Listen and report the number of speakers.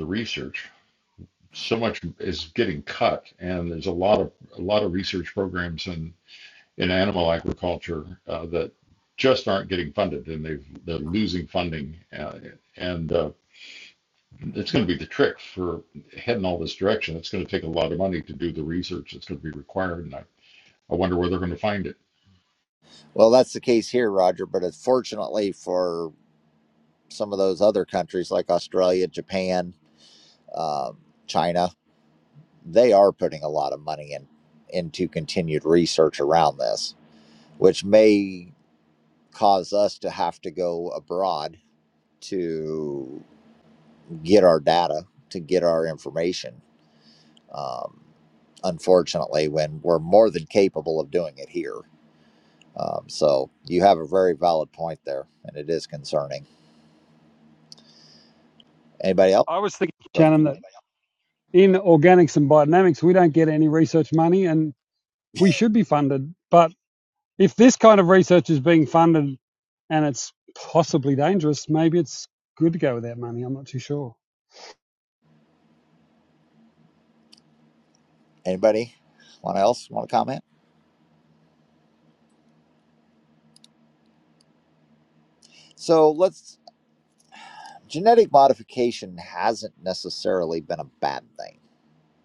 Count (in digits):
3